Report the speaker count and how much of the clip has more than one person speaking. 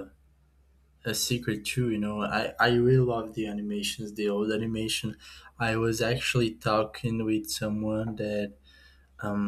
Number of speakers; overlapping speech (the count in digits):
1, no overlap